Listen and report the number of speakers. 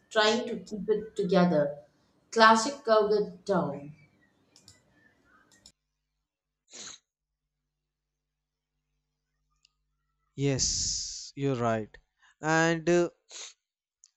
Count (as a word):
two